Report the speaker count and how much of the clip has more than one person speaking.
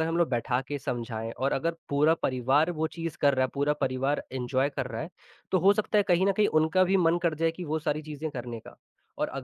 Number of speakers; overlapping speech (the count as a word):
one, no overlap